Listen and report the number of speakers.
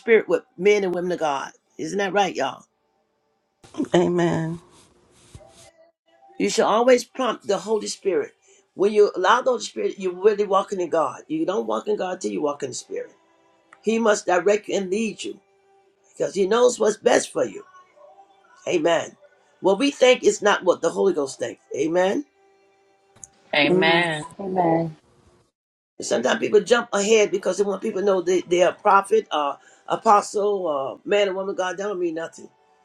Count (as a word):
three